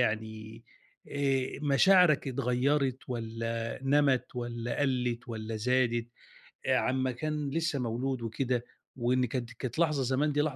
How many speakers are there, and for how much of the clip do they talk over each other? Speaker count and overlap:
1, no overlap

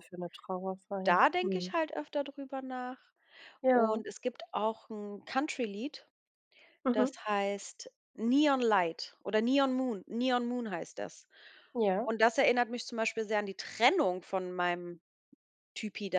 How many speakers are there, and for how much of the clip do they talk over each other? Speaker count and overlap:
2, about 7%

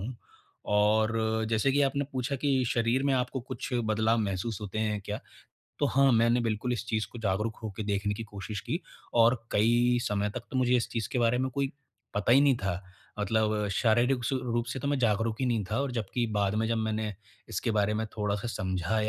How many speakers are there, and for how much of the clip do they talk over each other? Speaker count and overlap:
1, no overlap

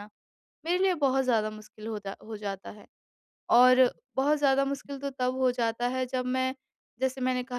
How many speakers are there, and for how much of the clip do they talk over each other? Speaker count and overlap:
1, no overlap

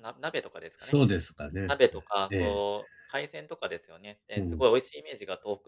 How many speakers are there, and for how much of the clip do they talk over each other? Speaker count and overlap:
2, about 11%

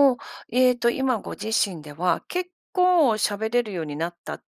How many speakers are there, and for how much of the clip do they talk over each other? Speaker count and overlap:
1, no overlap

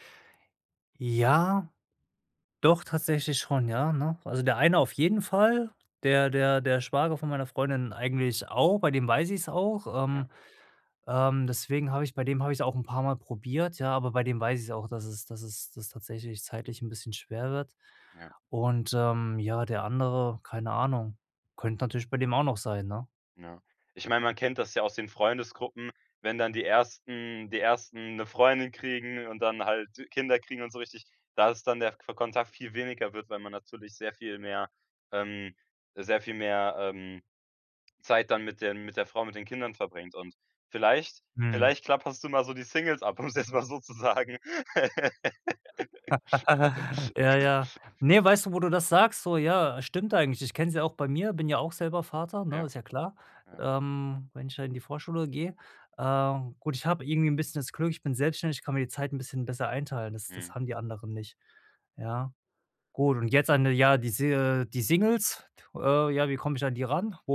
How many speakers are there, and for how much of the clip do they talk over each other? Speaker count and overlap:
2, about 1%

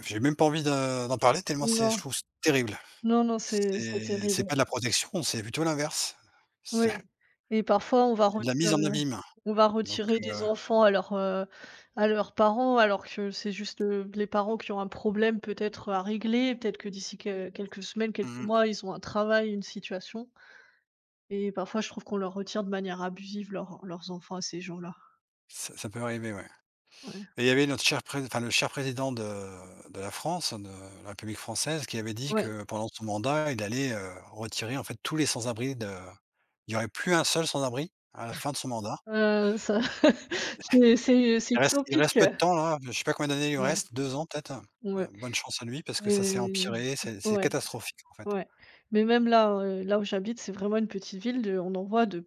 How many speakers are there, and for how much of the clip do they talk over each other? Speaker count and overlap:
2, about 10%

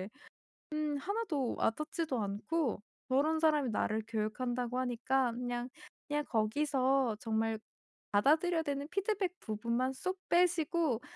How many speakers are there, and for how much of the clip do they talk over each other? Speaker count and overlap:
1, no overlap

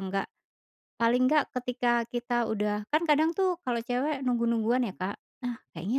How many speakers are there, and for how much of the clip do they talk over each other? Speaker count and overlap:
1, no overlap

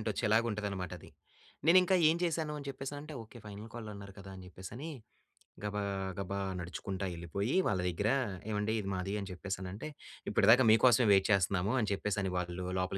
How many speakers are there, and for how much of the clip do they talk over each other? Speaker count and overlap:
1, no overlap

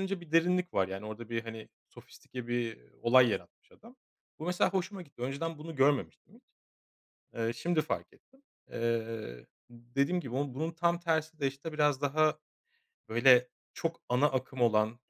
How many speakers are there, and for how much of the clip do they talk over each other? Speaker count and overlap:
1, no overlap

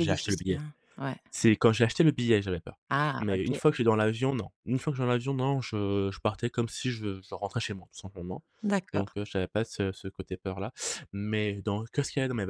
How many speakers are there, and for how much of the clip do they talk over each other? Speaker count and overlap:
2, about 10%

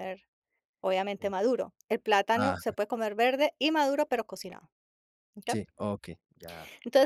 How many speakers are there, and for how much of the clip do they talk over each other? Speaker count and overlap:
2, about 7%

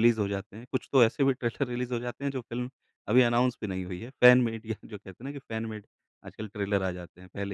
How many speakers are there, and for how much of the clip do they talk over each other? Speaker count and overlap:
1, no overlap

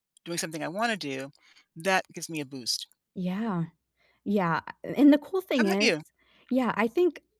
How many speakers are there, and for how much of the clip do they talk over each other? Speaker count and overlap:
2, about 5%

